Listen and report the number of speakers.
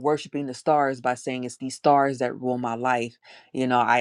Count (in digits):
1